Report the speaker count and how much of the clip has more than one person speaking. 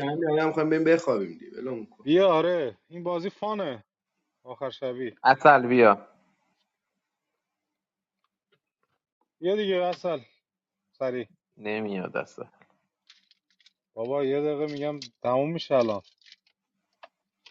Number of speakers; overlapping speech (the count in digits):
3, no overlap